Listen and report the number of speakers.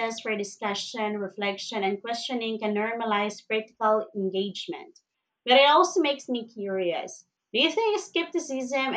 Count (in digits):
1